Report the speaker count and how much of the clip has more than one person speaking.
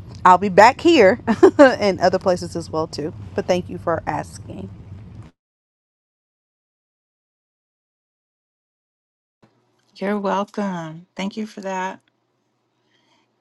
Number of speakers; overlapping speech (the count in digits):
2, no overlap